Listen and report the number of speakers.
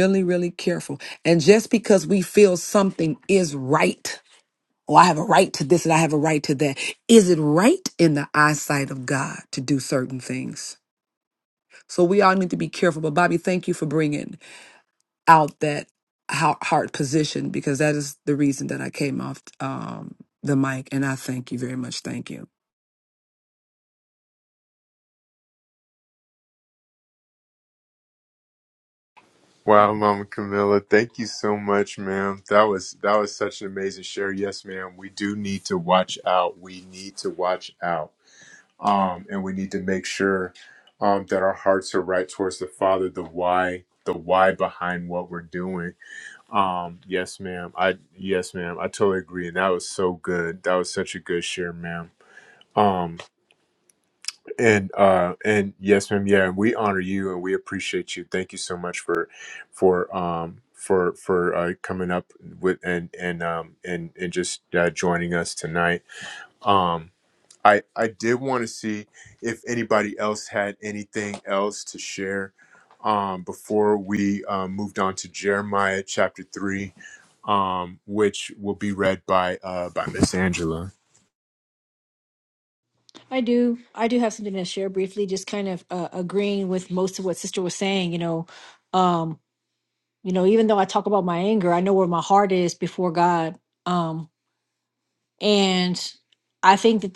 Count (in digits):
3